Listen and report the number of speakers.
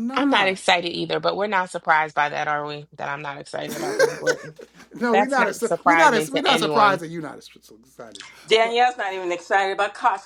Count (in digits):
3